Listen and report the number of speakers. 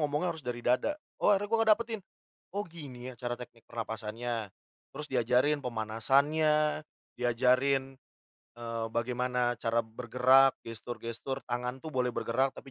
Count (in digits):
1